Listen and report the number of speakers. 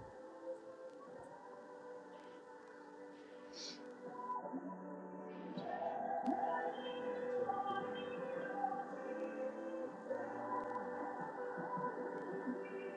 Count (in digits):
0